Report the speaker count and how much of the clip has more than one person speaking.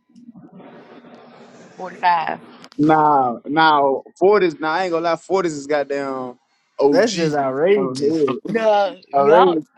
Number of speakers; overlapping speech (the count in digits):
3, about 11%